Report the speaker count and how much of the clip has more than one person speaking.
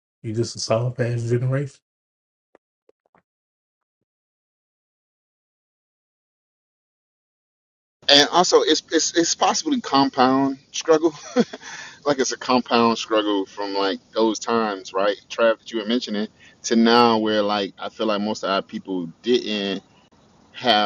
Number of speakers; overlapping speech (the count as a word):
two, no overlap